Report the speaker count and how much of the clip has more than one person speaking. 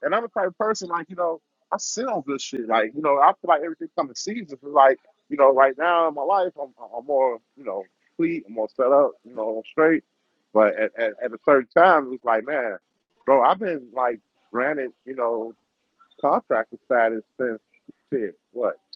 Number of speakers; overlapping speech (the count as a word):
one, no overlap